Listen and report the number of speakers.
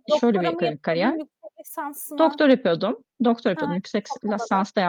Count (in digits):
2